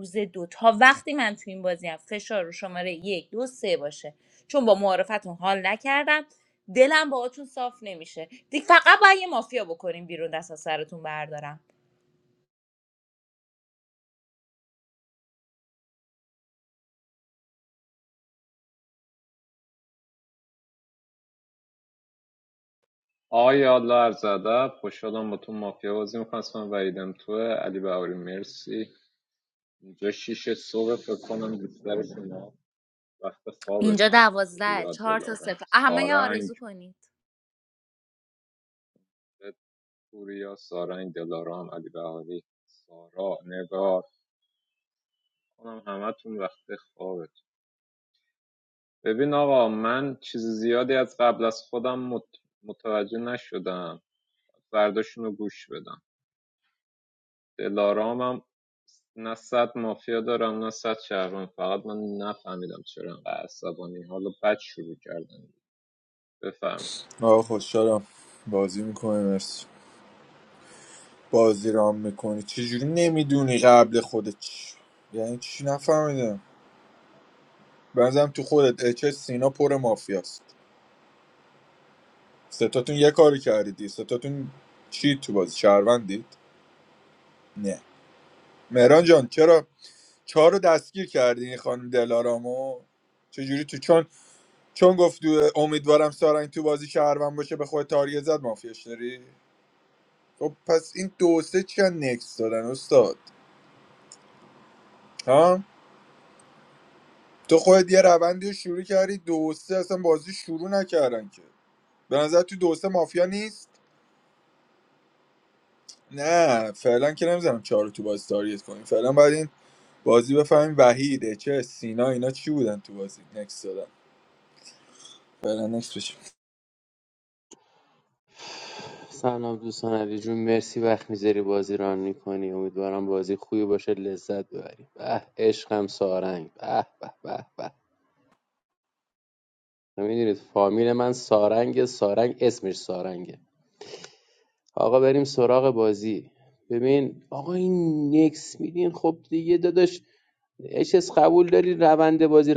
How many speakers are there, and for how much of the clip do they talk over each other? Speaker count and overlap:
4, about 1%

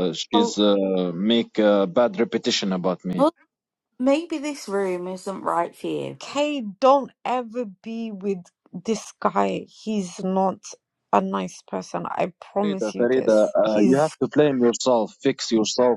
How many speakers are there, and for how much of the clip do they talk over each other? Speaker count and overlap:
3, about 11%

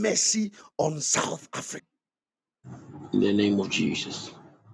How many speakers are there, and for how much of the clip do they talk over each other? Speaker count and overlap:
2, no overlap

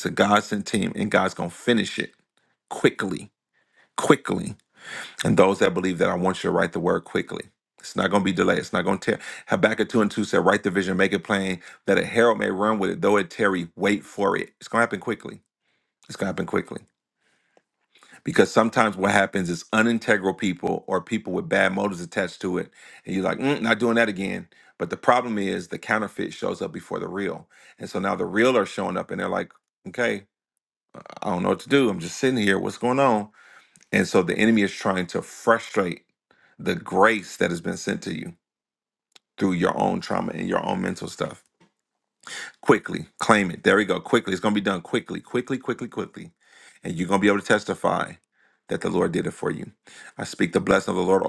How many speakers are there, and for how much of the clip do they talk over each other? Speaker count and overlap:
1, no overlap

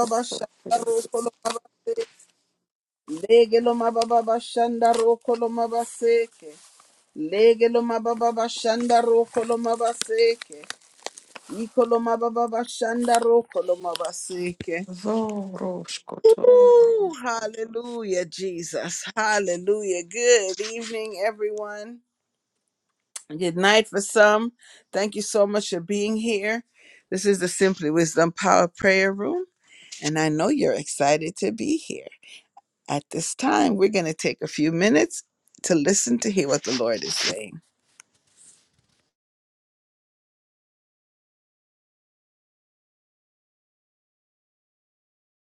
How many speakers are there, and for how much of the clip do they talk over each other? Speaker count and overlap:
2, about 2%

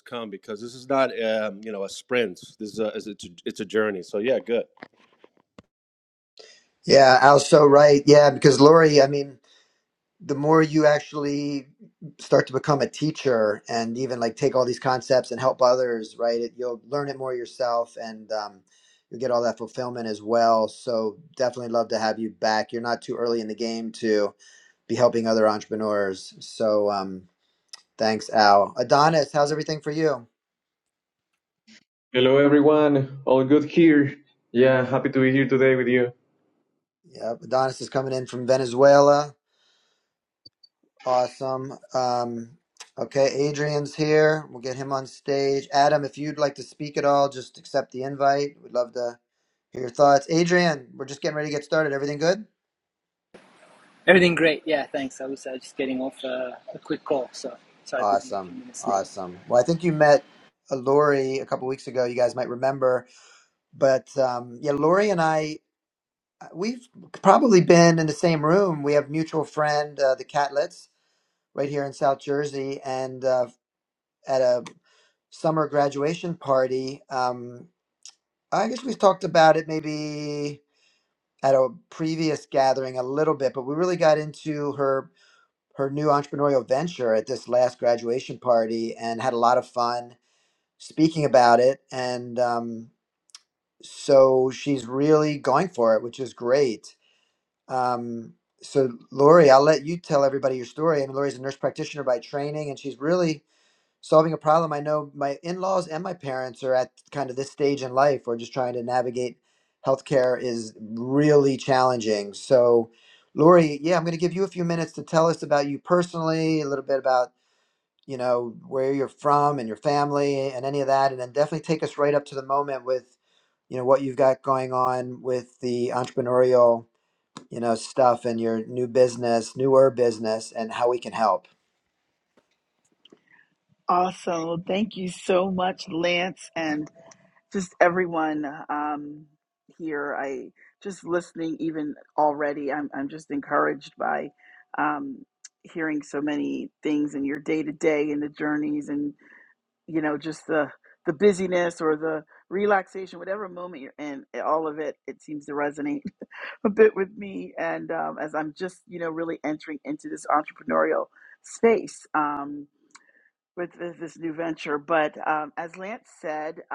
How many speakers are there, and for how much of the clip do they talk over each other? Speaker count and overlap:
5, under 1%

